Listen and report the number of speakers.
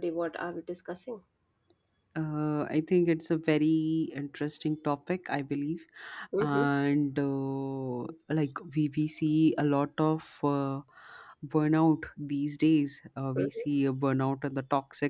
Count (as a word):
two